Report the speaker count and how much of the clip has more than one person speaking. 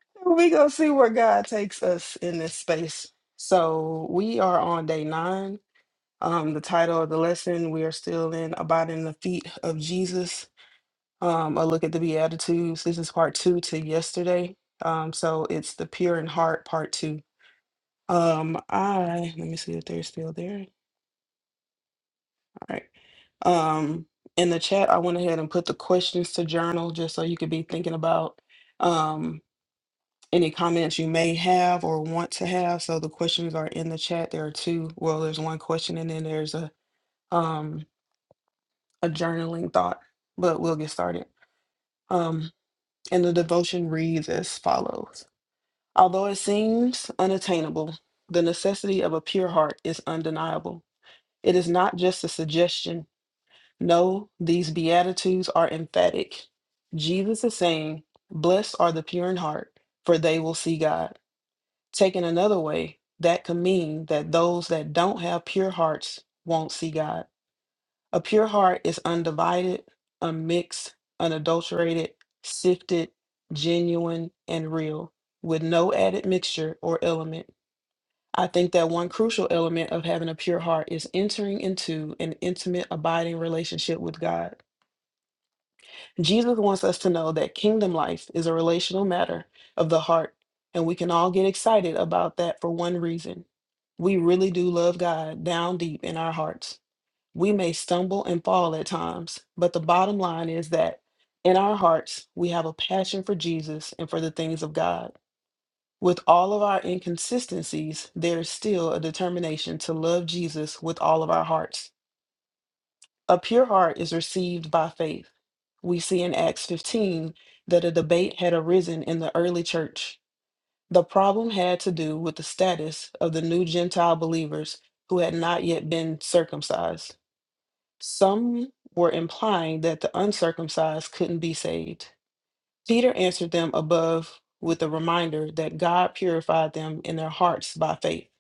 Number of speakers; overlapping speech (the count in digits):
1, no overlap